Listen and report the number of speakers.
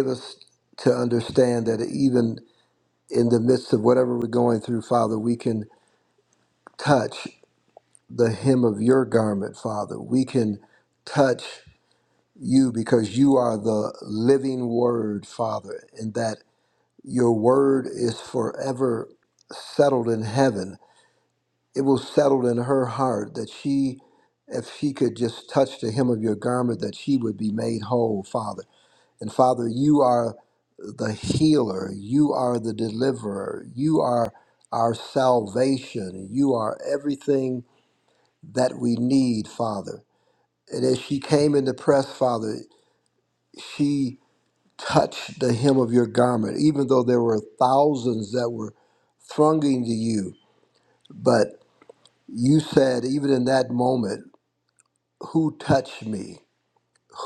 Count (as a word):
one